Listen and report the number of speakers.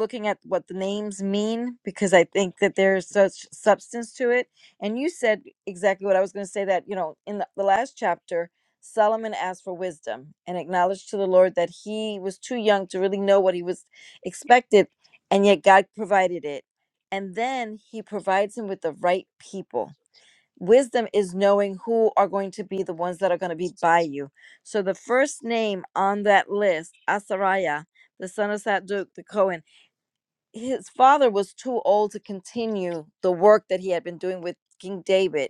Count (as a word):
one